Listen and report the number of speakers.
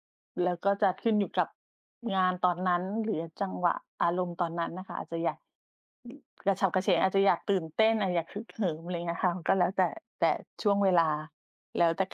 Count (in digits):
1